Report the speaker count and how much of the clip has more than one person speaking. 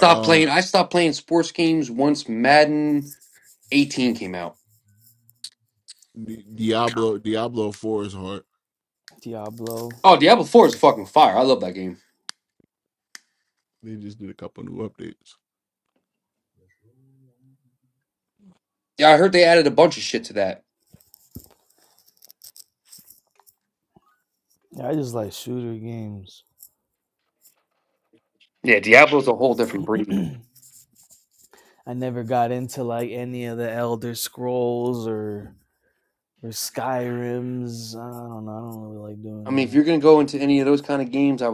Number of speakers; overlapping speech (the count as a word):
three, about 2%